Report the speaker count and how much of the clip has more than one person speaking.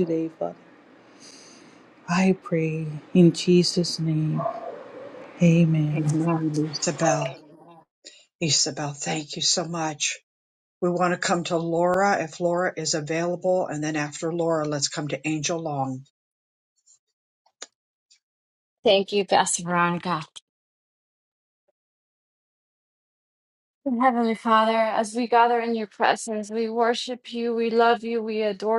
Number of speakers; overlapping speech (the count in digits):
3, about 1%